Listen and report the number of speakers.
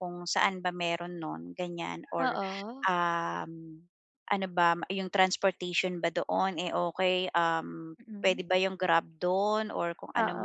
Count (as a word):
two